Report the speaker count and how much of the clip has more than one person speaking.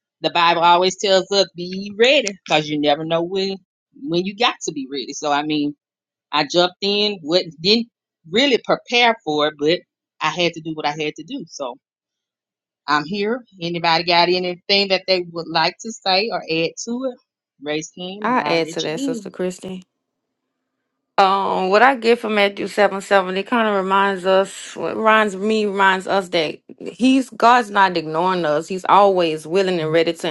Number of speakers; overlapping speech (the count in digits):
2, about 3%